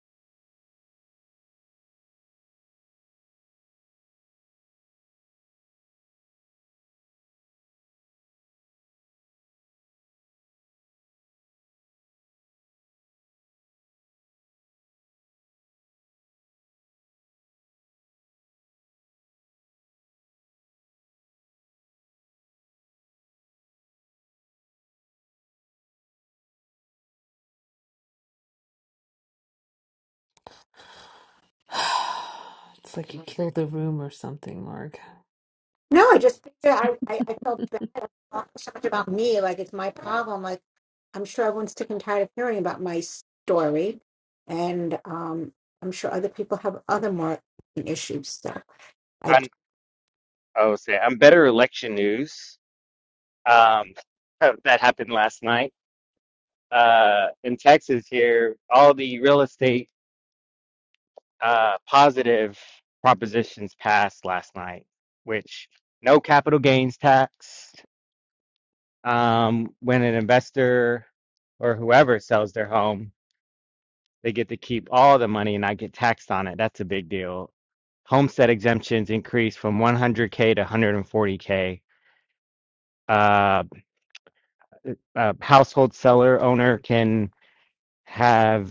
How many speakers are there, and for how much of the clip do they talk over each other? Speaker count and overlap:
3, under 1%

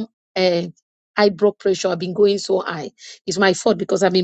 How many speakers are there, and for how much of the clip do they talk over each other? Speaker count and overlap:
1, no overlap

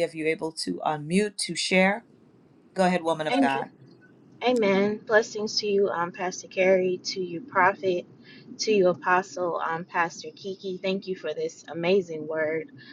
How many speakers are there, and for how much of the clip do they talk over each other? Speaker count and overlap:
2, about 2%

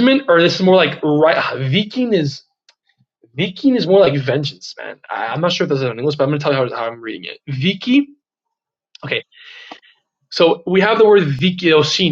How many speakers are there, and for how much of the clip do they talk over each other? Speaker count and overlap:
1, no overlap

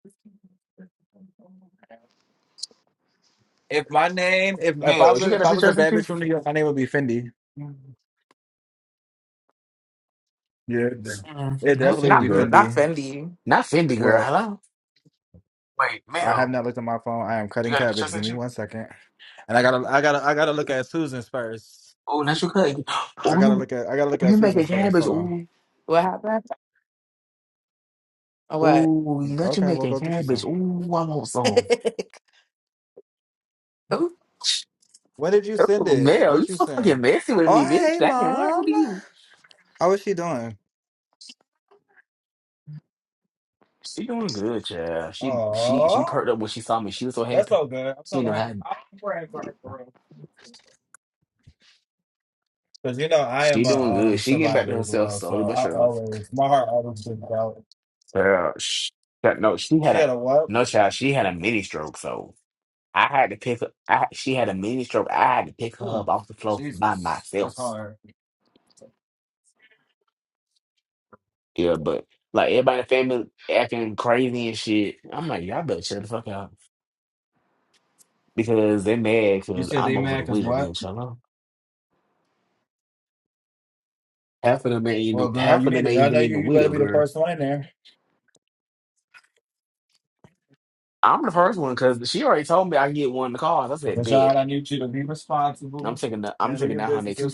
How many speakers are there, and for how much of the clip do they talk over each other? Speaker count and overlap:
3, about 19%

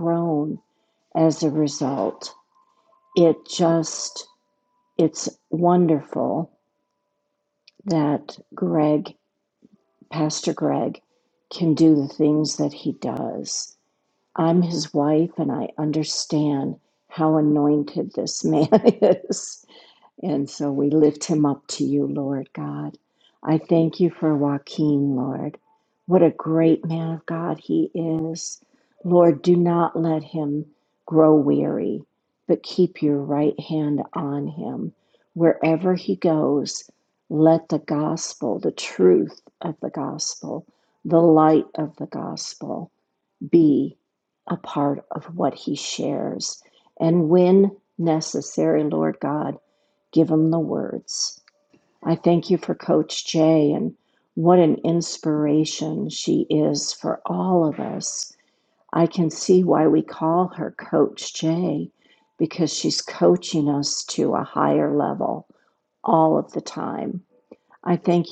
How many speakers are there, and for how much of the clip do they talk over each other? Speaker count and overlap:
1, no overlap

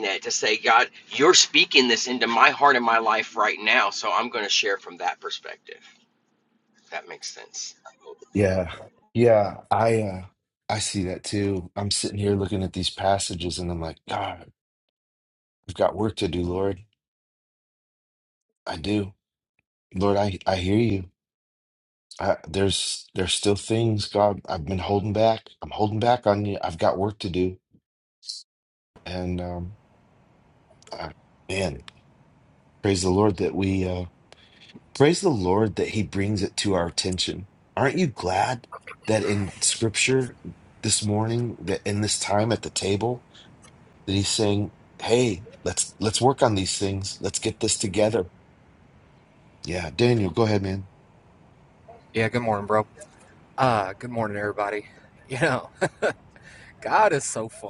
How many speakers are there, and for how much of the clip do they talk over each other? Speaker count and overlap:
3, no overlap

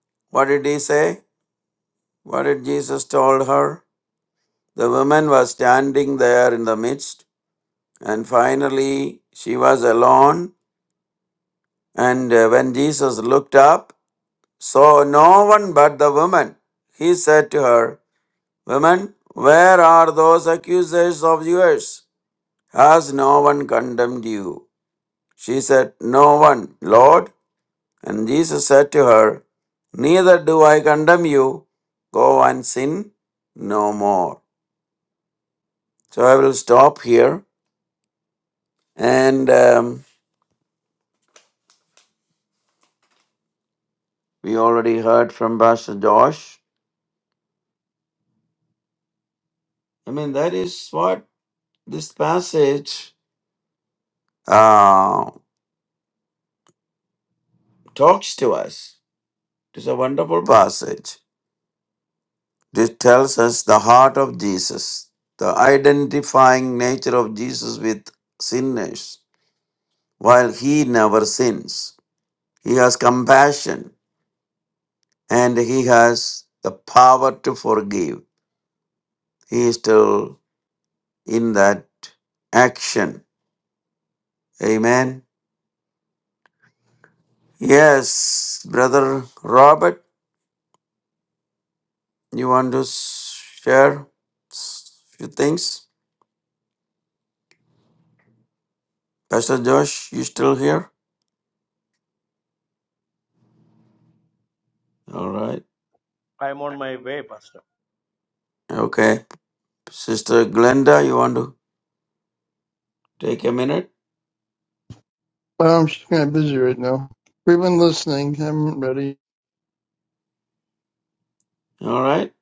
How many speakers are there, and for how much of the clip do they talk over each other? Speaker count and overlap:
3, no overlap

